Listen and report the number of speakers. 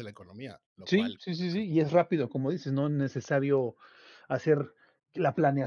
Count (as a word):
two